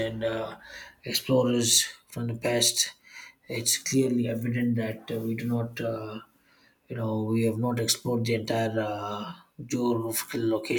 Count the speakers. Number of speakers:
1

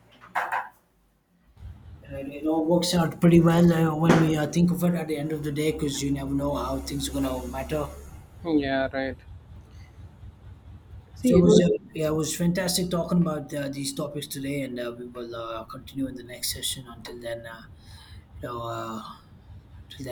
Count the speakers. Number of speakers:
2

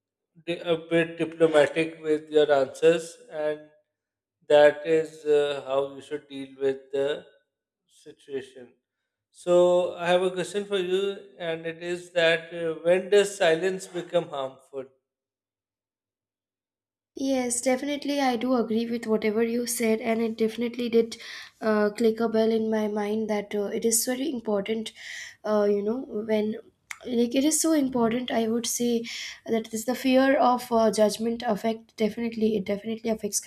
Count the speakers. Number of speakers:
2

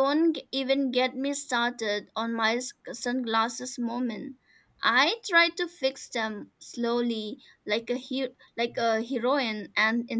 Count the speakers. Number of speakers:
1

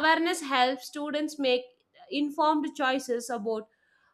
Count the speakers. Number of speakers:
1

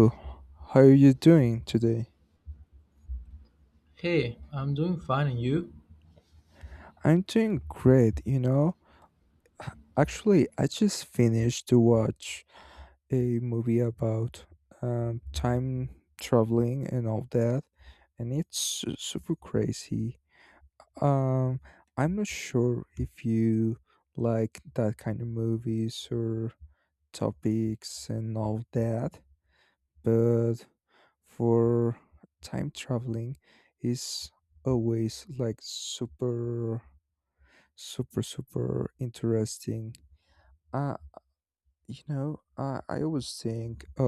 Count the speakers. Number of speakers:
2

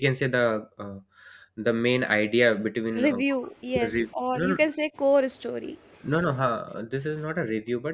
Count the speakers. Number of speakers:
2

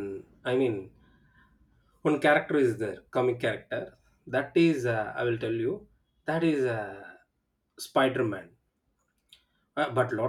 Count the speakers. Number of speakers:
1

